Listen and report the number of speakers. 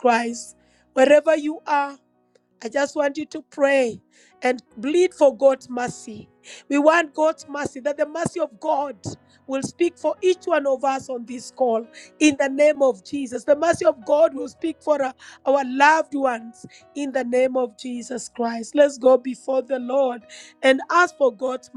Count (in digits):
1